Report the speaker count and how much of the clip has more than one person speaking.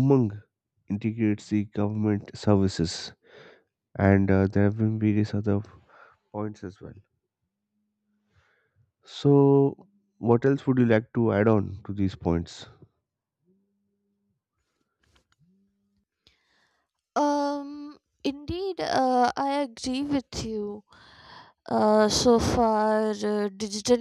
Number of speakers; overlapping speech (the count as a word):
two, no overlap